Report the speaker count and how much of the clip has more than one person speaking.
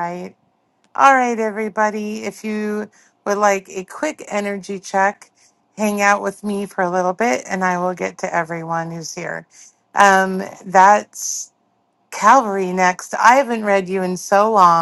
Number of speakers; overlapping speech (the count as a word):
one, no overlap